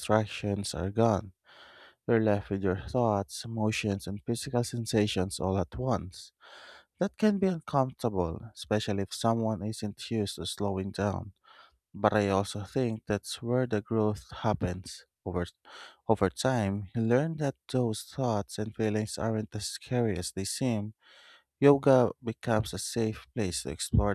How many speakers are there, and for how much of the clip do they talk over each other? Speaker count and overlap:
1, no overlap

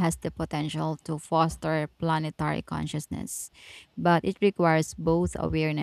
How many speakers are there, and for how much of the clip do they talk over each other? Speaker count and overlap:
1, no overlap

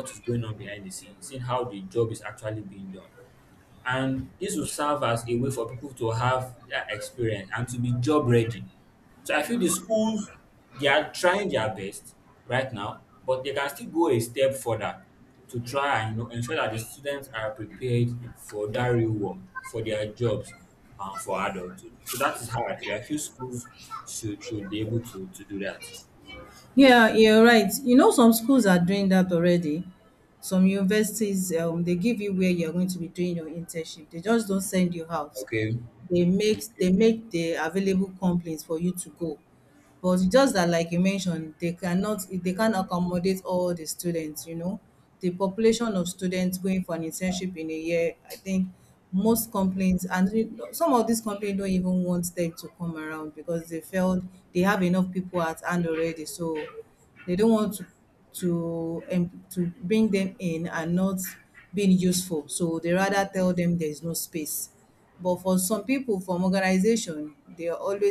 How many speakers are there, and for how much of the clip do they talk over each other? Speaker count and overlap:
2, about 1%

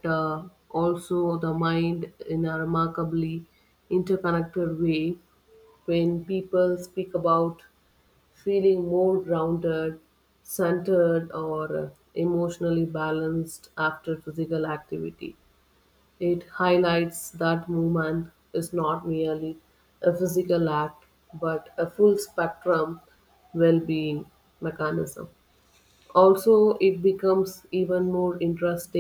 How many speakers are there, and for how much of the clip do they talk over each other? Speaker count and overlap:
1, no overlap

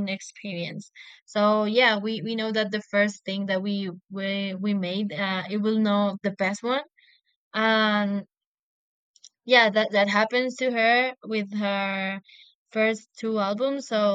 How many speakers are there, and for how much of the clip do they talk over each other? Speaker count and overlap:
1, no overlap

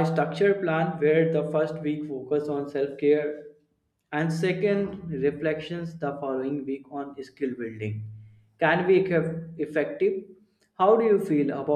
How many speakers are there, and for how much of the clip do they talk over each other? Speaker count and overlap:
1, no overlap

